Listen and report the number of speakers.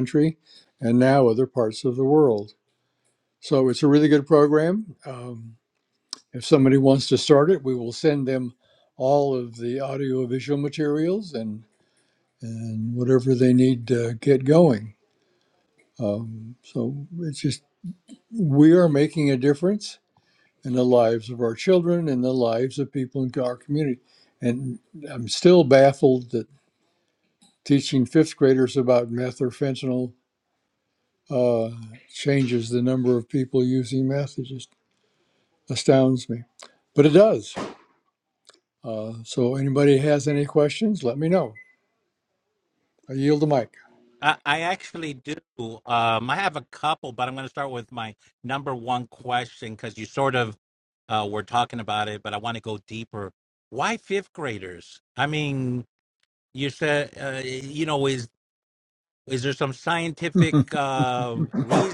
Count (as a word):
two